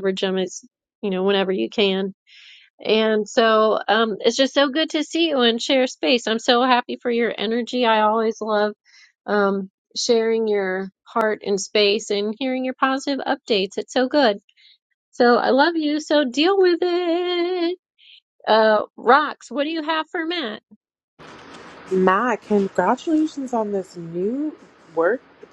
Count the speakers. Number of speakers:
two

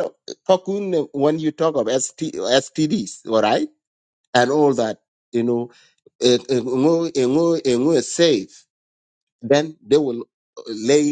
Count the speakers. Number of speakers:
one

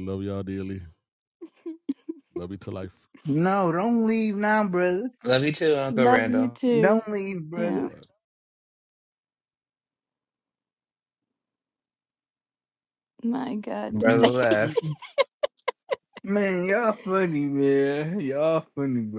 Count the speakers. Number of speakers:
four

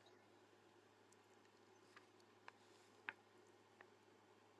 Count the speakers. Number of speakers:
zero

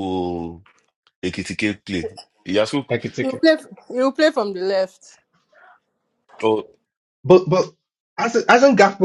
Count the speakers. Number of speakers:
three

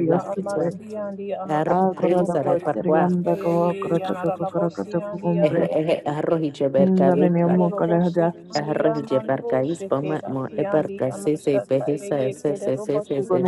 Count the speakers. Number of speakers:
three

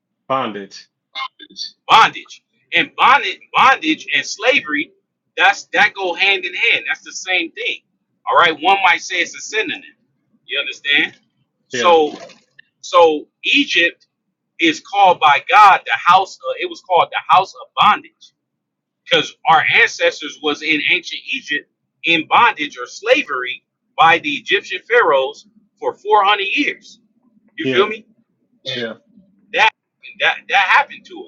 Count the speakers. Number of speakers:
two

